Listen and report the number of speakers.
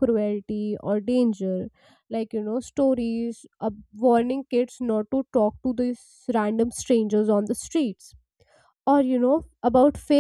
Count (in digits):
1